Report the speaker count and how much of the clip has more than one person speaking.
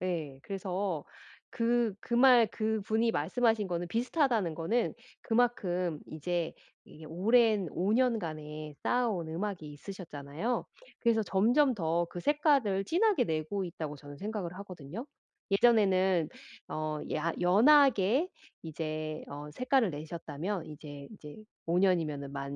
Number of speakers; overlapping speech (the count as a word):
one, no overlap